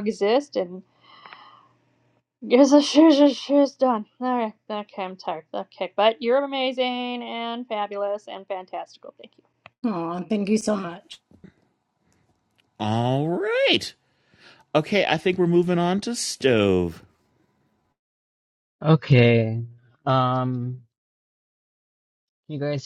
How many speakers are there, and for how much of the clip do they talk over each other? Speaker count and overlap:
4, no overlap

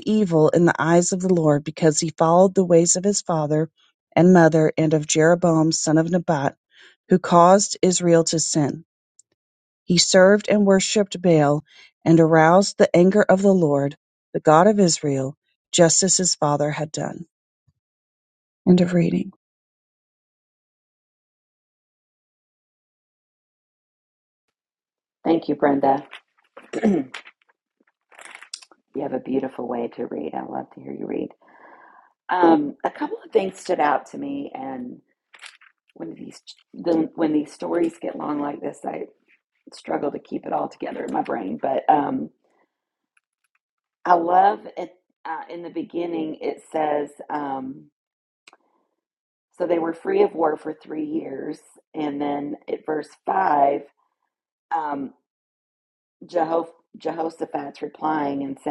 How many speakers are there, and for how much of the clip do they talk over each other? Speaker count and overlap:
2, no overlap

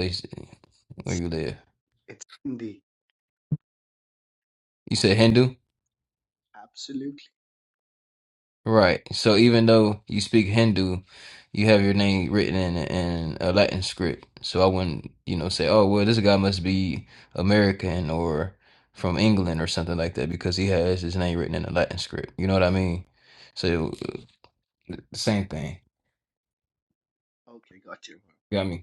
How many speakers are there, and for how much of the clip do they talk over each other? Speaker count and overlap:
2, under 1%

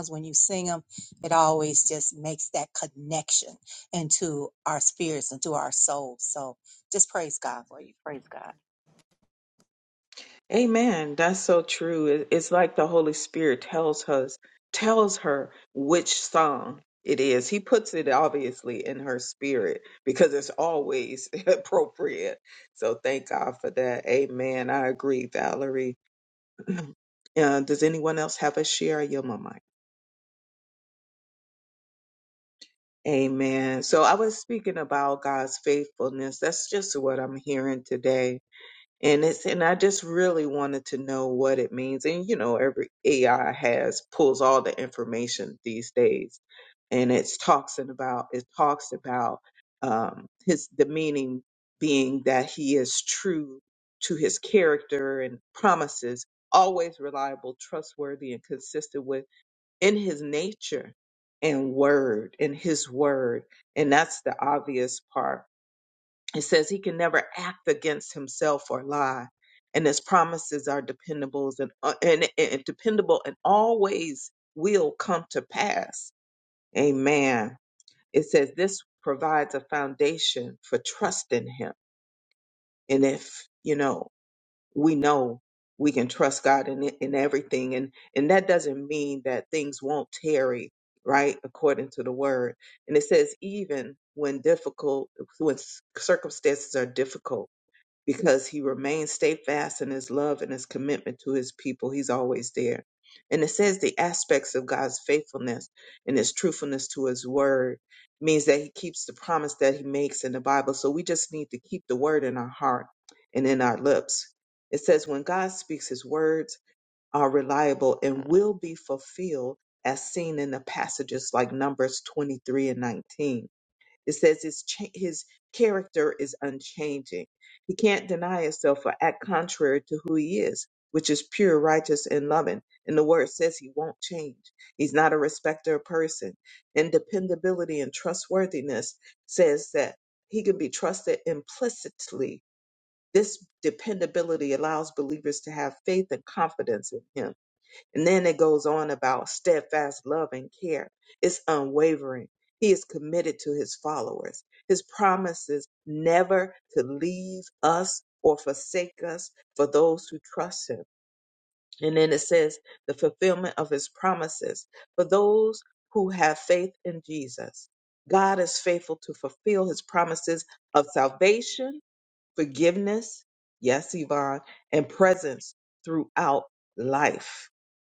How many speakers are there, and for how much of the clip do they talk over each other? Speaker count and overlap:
2, no overlap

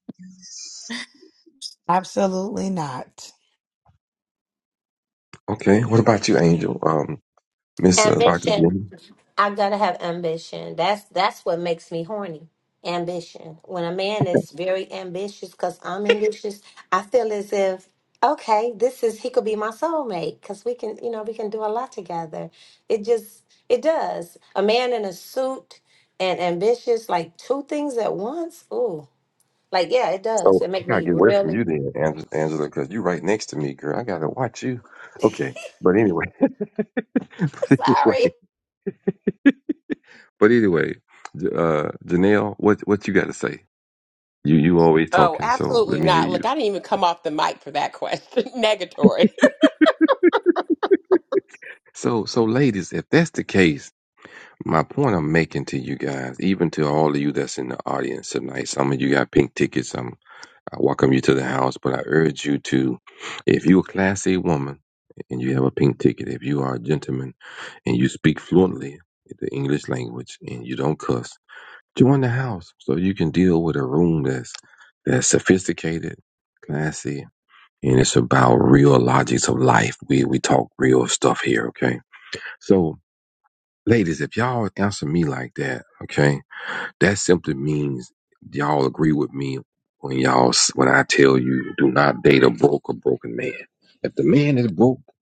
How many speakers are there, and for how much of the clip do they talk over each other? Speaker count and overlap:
4, about 4%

